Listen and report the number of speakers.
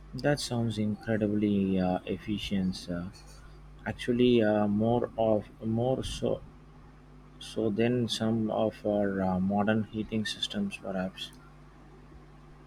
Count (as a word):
one